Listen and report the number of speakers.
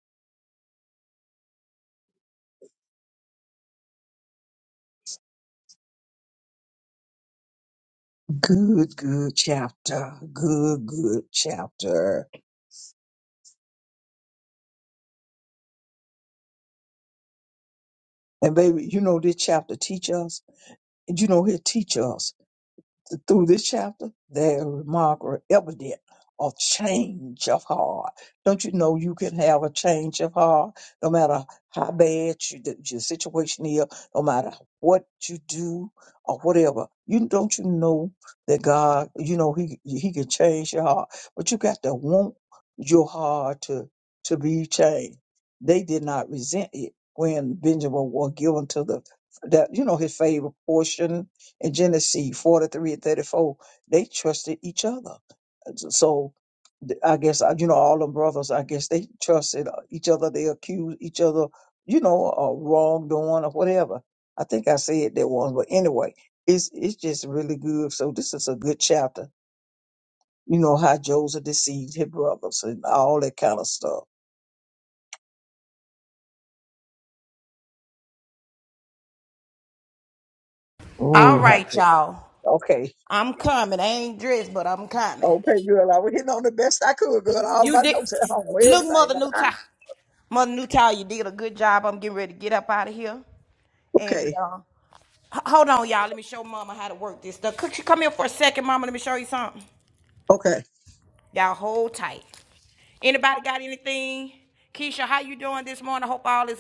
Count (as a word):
two